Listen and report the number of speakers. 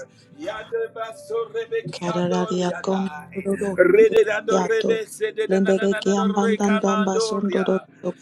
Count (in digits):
2